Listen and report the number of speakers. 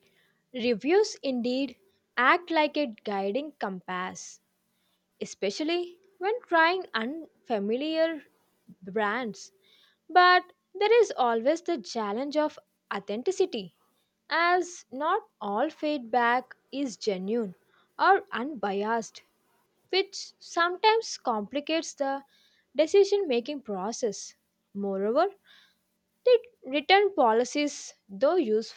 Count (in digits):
1